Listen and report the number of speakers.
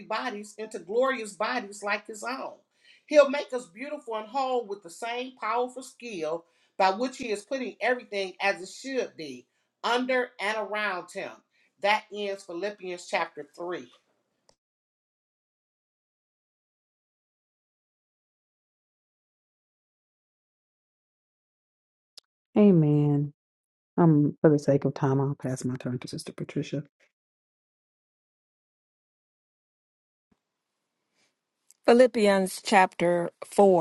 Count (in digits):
3